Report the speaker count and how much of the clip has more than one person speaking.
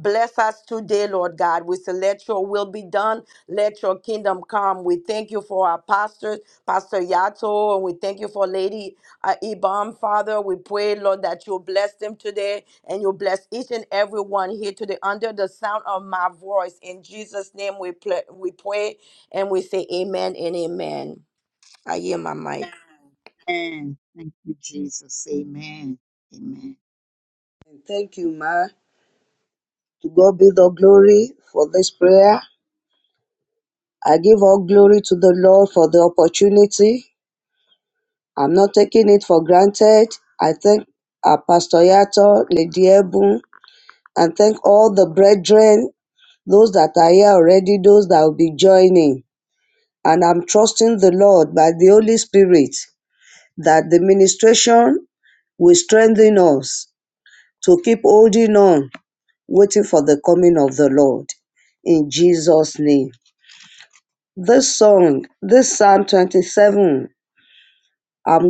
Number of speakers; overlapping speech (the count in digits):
3, no overlap